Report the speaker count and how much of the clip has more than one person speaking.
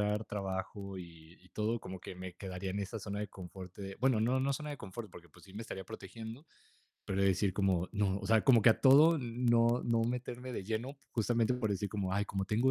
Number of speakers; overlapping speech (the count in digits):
1, no overlap